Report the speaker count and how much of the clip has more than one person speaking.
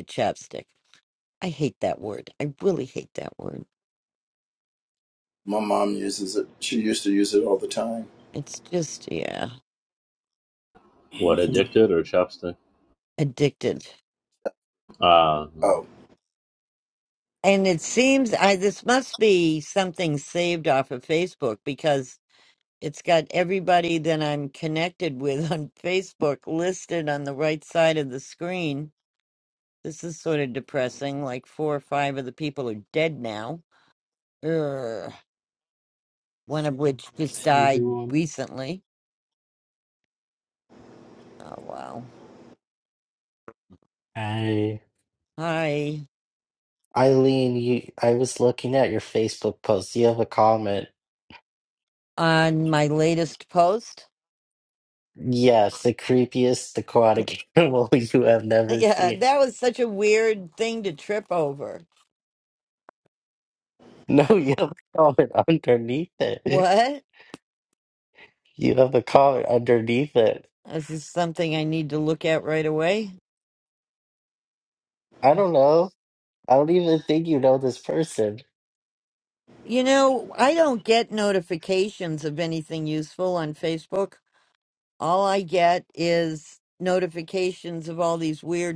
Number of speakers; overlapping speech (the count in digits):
4, about 2%